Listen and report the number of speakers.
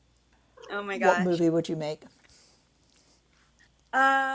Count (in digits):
2